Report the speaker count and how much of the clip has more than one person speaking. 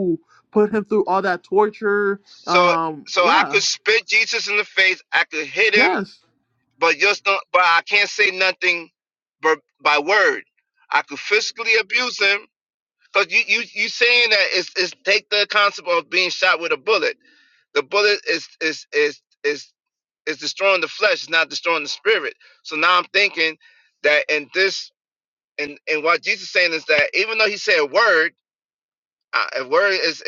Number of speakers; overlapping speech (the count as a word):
two, about 4%